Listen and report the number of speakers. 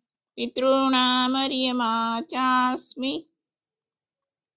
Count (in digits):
1